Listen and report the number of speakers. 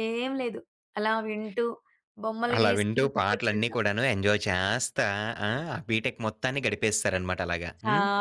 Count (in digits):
2